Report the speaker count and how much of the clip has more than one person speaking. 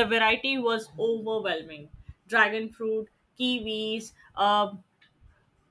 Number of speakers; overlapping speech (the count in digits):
1, no overlap